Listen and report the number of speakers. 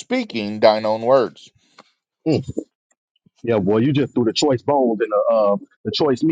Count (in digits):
2